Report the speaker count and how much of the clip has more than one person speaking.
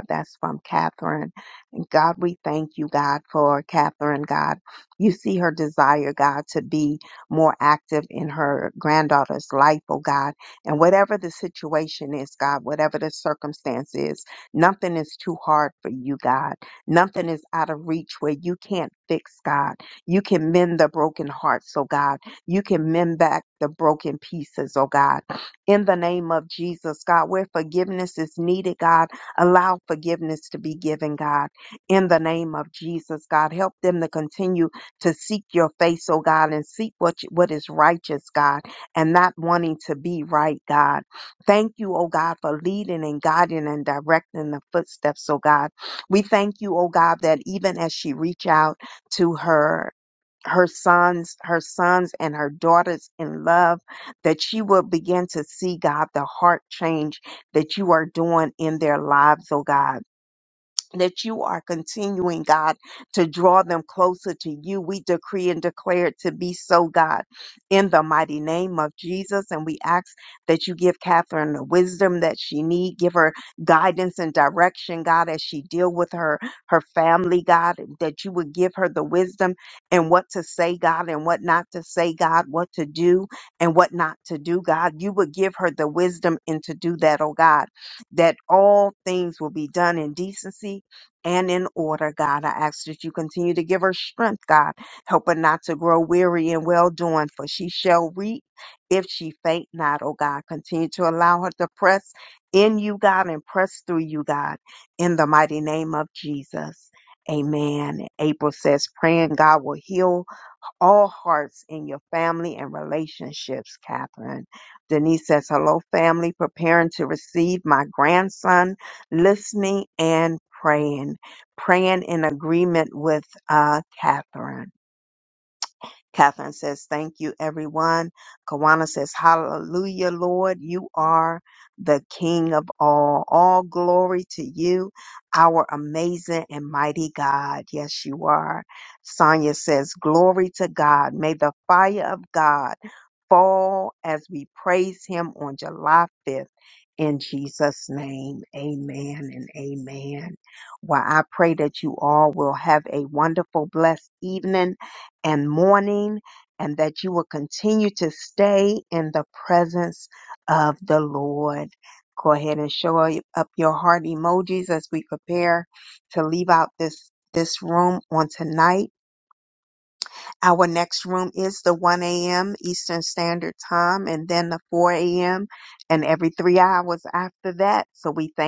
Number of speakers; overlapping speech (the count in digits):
1, no overlap